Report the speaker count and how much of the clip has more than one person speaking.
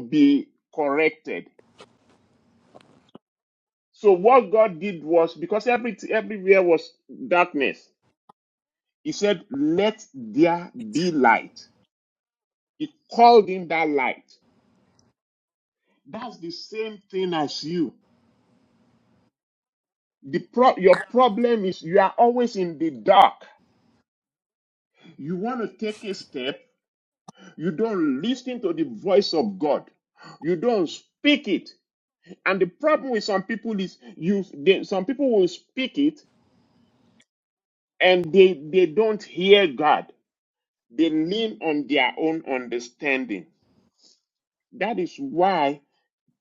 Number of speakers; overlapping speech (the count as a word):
one, no overlap